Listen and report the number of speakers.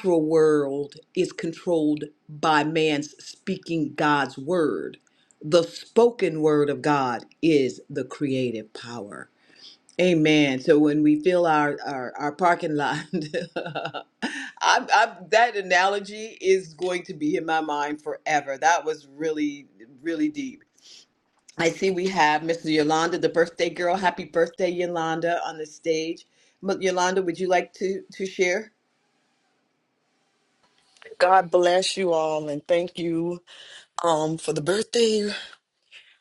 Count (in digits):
2